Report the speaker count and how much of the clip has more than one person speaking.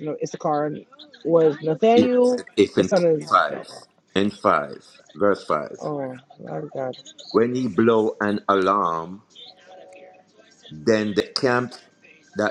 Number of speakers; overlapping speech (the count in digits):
2, about 5%